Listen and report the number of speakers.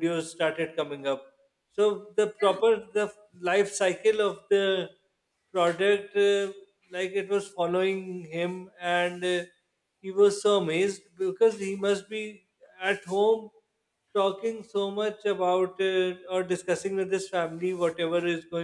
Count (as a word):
one